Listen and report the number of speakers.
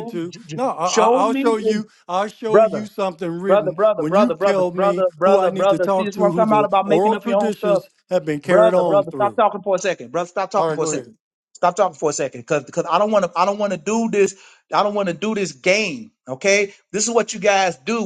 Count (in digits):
2